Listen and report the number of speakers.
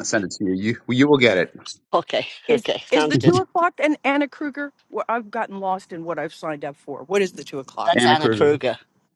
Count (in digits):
3